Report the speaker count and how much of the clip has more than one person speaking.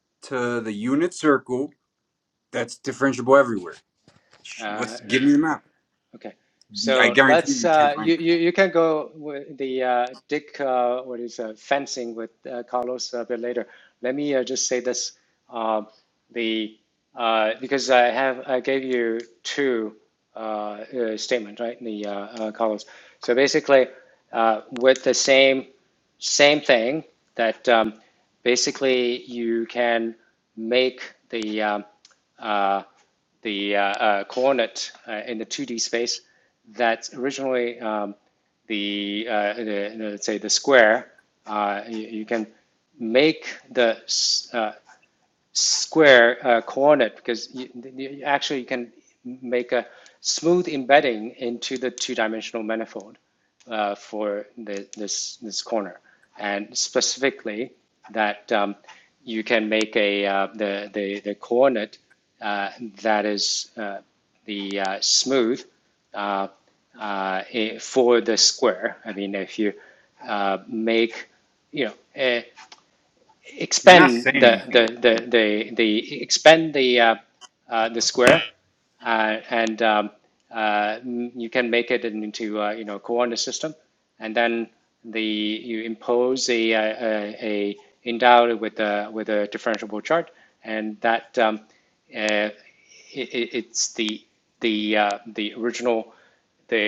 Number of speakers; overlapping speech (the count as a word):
two, about 3%